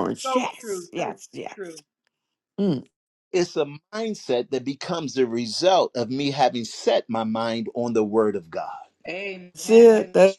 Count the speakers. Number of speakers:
3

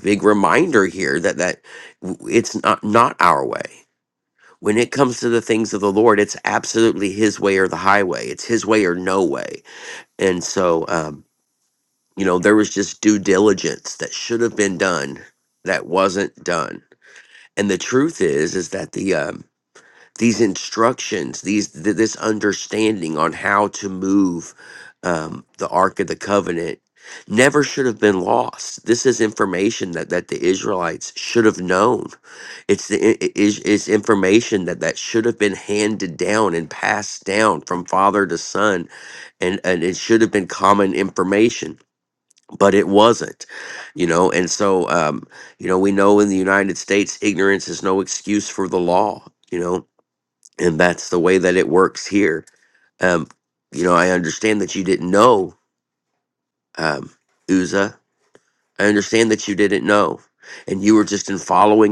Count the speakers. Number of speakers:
1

